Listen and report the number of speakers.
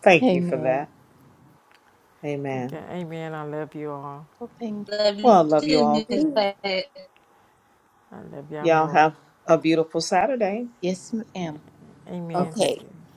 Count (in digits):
4